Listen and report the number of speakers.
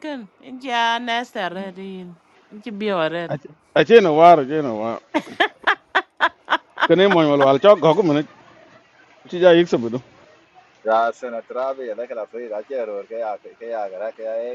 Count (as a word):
three